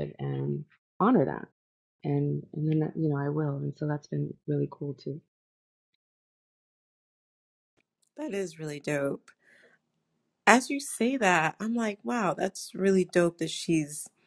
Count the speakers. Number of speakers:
two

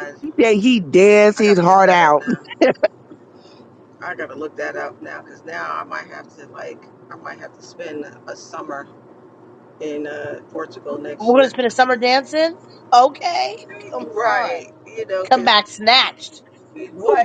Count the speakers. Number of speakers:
three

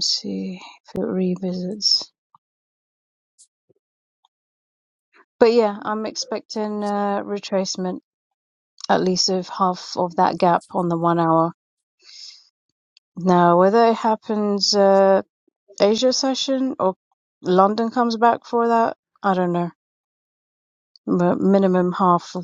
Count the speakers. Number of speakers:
one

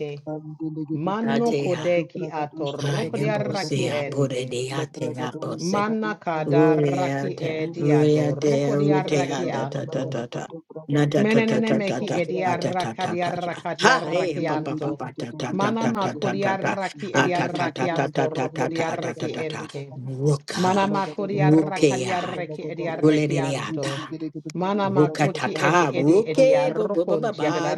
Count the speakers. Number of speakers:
three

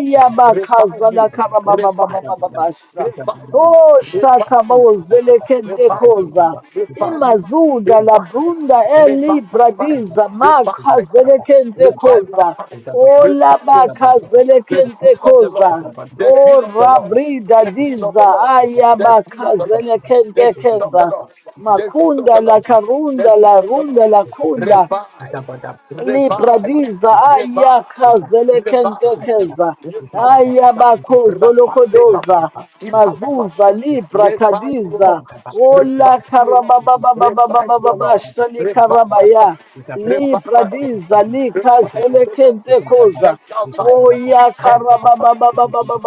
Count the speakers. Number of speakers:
two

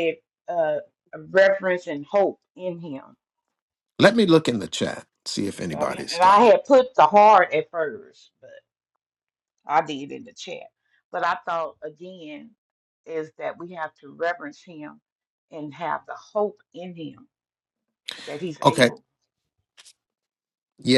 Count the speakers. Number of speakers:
two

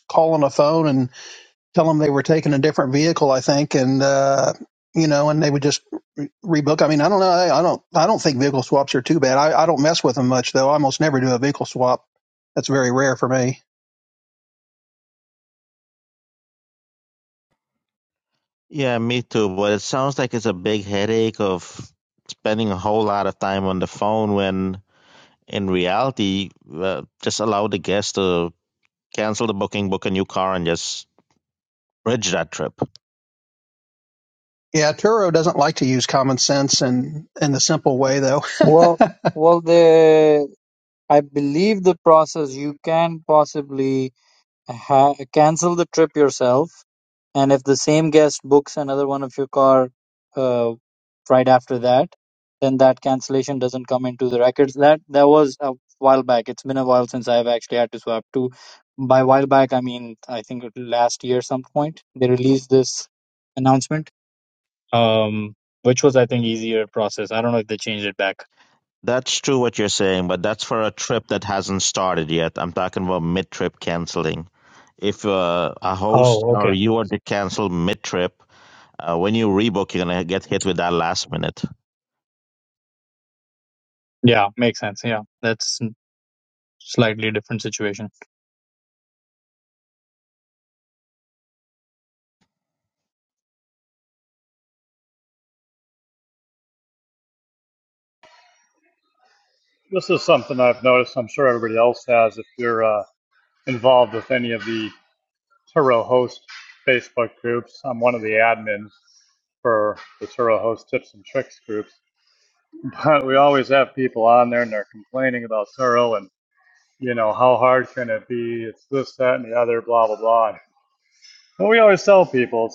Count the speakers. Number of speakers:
four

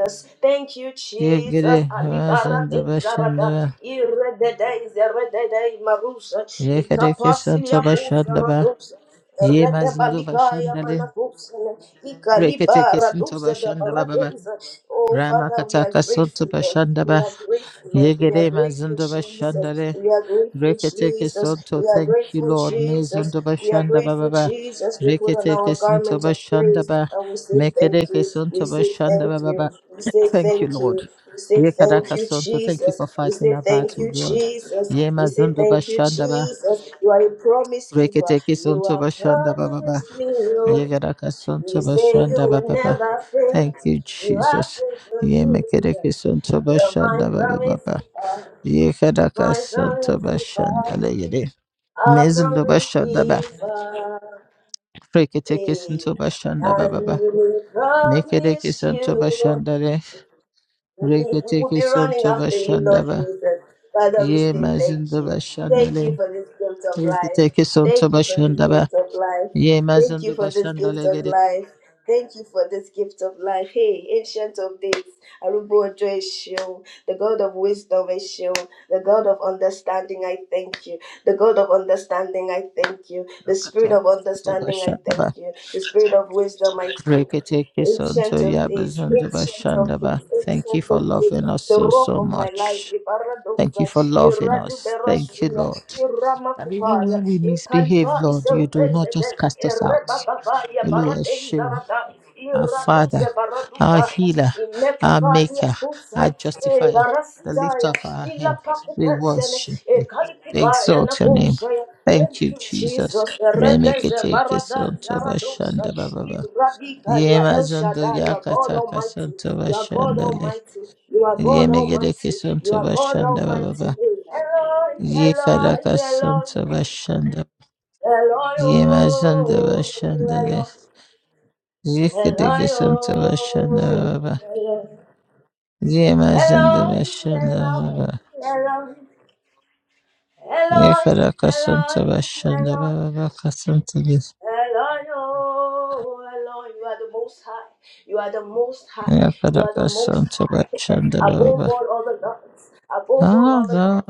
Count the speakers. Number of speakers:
two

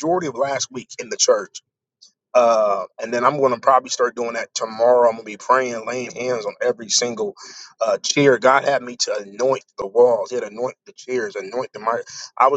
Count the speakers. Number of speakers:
one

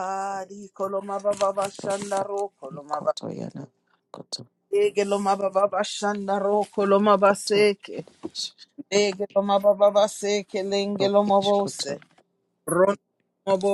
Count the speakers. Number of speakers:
two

